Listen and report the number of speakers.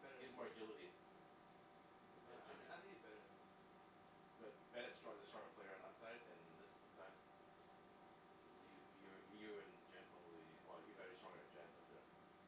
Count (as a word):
two